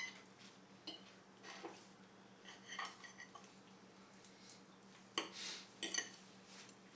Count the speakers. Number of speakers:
0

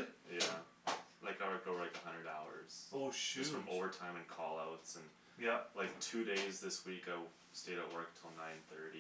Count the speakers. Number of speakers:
2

